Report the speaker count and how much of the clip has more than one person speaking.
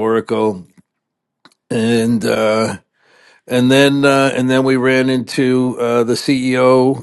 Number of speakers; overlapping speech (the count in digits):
1, no overlap